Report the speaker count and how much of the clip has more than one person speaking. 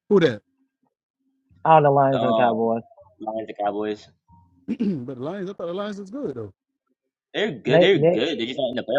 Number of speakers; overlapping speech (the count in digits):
3, about 11%